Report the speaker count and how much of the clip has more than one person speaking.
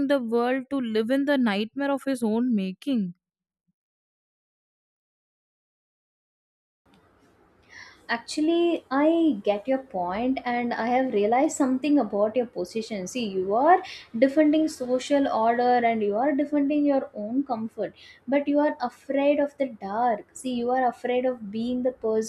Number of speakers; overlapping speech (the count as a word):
two, no overlap